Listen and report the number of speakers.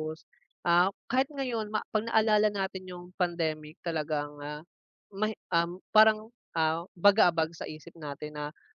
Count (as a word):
one